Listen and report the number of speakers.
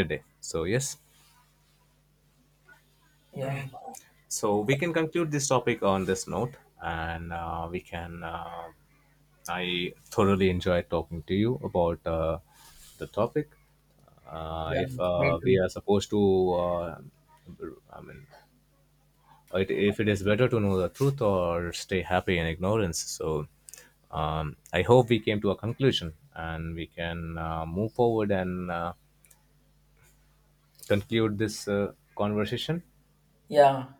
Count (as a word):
two